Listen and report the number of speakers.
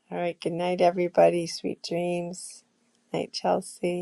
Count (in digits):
1